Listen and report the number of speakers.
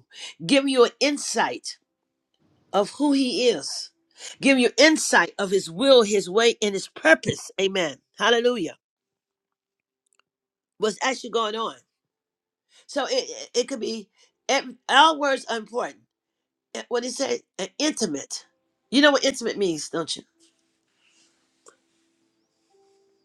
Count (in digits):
1